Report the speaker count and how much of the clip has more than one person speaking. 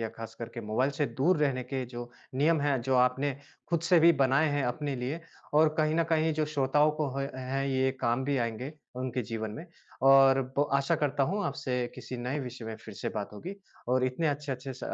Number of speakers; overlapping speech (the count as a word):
one, no overlap